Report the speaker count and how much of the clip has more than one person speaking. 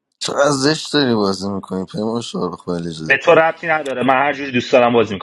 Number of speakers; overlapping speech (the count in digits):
2, about 5%